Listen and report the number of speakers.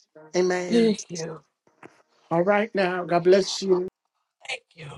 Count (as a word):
two